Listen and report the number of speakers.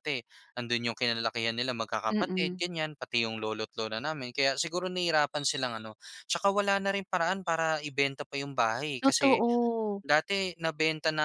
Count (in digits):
2